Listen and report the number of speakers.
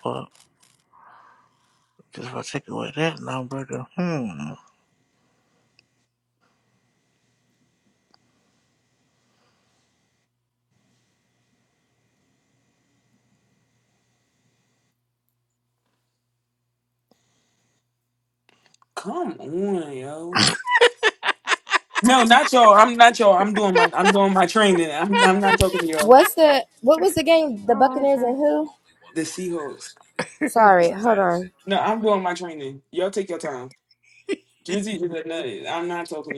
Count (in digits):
3